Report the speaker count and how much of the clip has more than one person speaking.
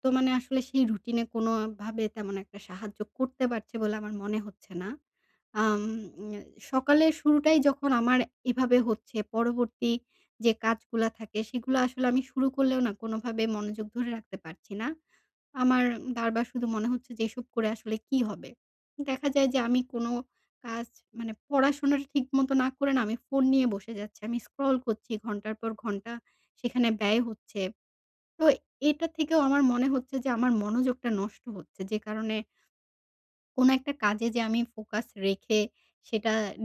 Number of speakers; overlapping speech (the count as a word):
one, no overlap